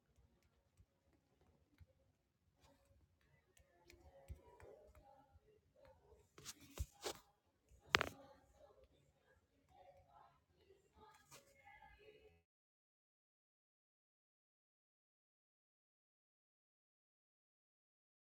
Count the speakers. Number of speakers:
zero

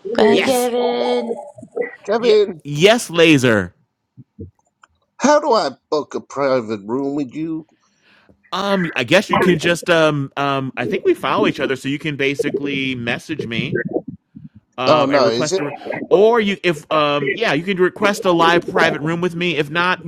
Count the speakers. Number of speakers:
three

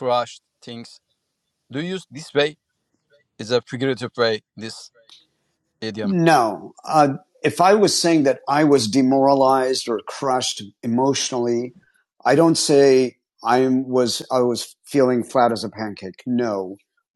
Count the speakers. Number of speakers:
two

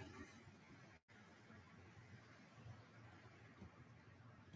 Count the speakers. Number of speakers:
zero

